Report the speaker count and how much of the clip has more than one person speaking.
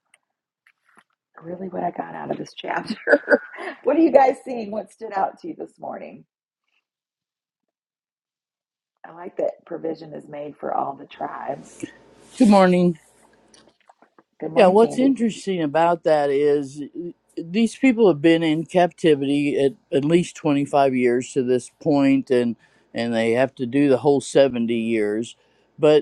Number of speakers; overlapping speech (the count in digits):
2, about 2%